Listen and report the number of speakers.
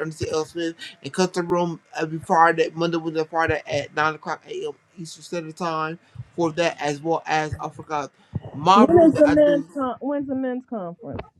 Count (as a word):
two